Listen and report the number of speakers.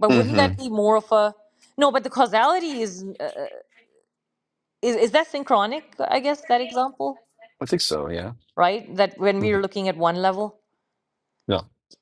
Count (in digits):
2